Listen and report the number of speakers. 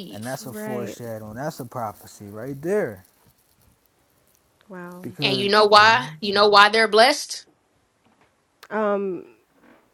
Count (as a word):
three